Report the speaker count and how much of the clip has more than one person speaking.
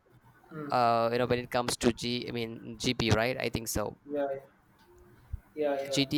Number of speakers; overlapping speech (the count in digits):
2, about 5%